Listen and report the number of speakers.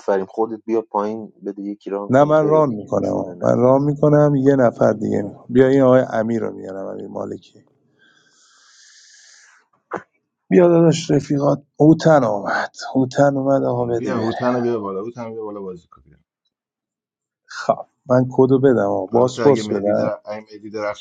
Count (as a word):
three